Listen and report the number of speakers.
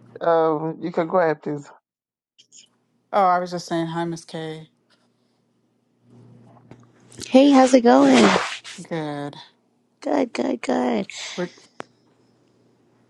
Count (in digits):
3